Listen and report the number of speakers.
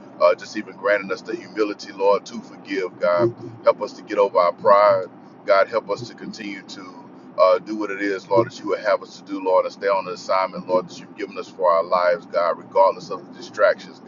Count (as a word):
one